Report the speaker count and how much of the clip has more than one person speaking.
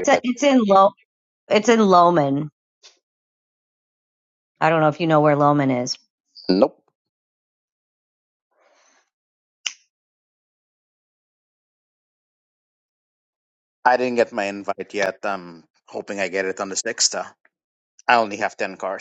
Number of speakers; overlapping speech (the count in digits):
2, about 1%